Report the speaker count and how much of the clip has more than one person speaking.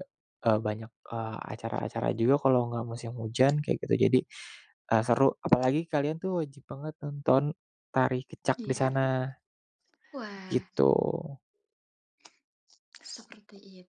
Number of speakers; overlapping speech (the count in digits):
2, about 4%